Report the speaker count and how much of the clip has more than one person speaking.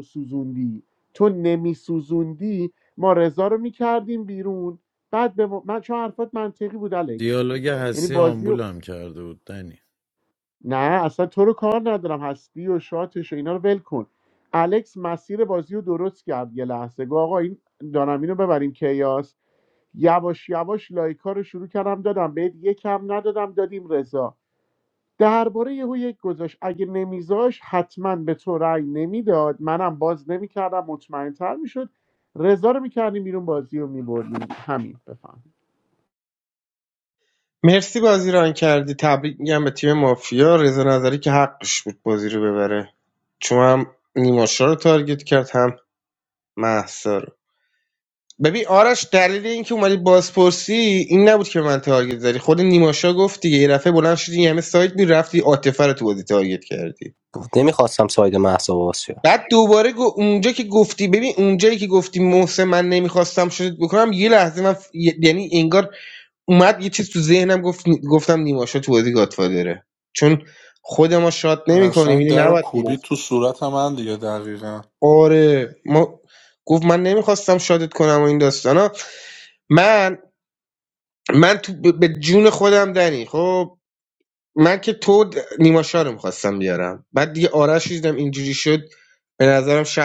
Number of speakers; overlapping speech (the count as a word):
five, about 2%